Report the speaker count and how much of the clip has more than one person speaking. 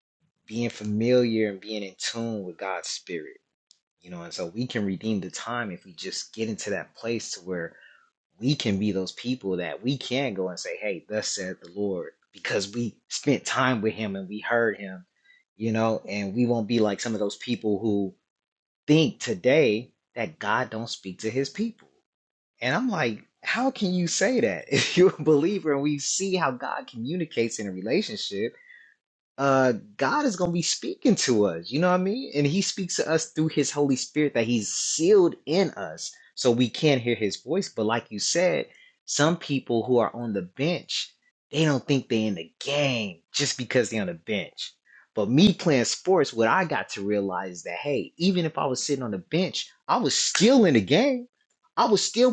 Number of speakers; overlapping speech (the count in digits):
1, no overlap